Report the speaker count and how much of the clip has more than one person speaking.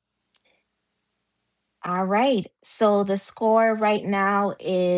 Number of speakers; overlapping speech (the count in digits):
1, no overlap